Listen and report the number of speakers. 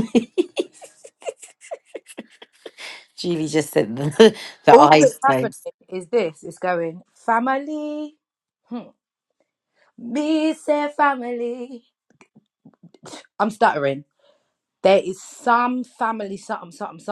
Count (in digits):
2